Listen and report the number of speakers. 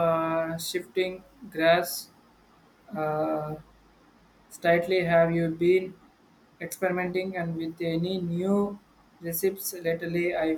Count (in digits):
1